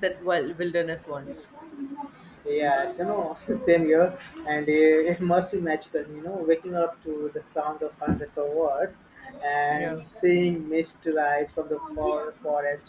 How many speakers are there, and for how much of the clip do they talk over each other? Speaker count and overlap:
2, about 2%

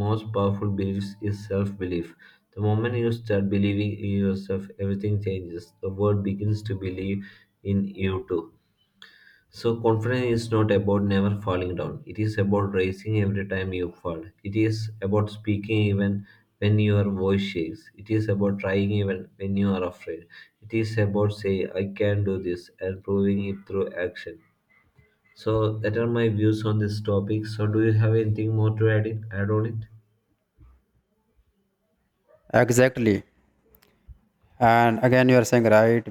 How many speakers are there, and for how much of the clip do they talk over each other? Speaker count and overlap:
2, no overlap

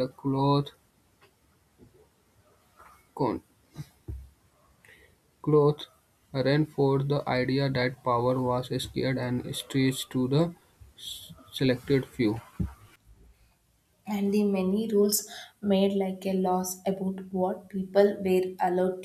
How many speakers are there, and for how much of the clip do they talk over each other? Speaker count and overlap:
2, no overlap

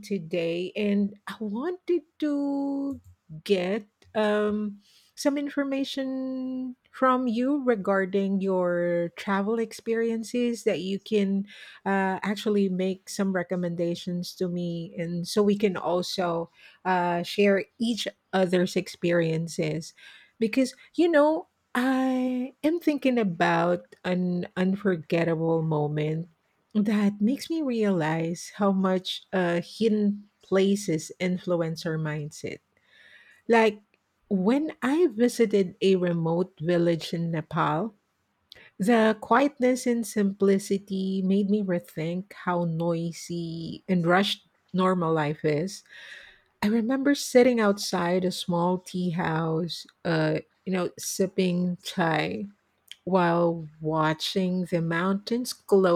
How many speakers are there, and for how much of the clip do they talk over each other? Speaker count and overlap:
1, no overlap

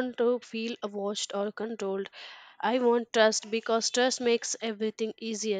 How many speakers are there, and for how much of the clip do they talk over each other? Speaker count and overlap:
1, no overlap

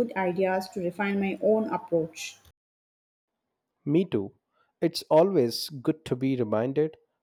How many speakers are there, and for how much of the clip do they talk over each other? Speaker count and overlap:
2, no overlap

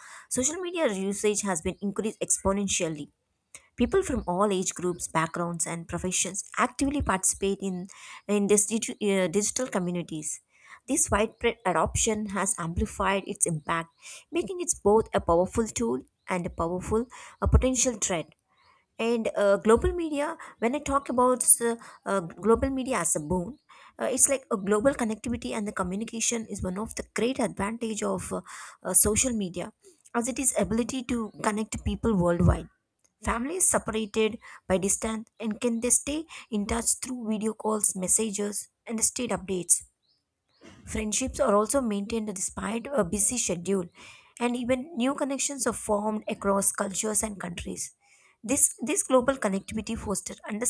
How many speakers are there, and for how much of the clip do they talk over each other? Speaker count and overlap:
1, no overlap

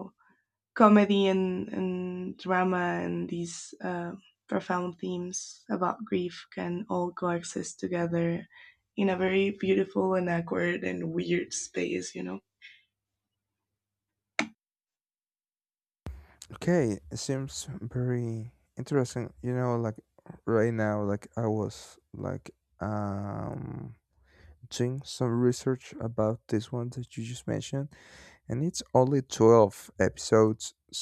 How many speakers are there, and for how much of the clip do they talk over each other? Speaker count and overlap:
2, no overlap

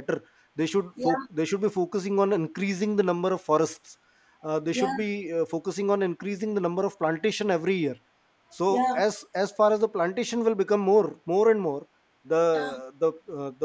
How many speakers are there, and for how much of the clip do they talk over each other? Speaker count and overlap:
2, about 7%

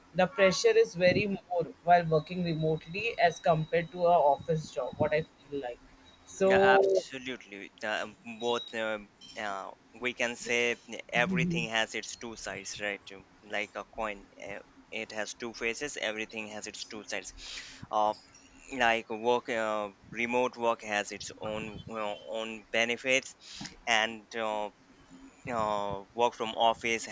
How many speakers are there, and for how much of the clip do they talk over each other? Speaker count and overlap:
2, about 2%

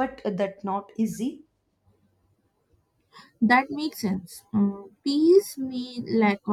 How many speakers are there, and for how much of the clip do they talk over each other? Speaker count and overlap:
2, no overlap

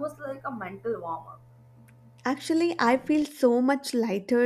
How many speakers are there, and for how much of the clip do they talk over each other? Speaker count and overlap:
2, no overlap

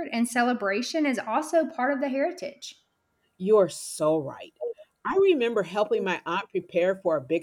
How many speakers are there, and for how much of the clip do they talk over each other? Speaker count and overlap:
2, no overlap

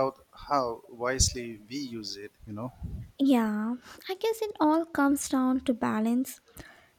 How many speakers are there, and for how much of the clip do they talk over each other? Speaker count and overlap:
2, no overlap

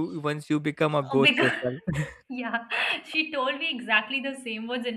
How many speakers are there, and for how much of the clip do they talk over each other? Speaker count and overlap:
2, about 10%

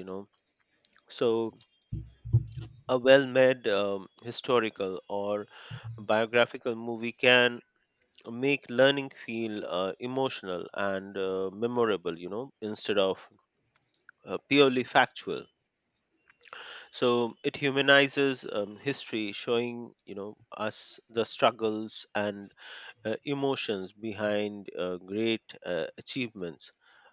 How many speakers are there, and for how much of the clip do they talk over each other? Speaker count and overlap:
1, no overlap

